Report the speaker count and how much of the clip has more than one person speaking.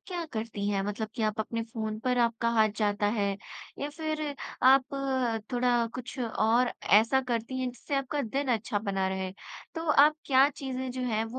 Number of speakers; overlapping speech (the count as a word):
one, no overlap